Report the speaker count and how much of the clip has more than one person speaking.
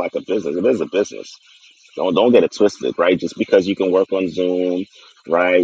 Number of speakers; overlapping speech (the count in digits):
1, no overlap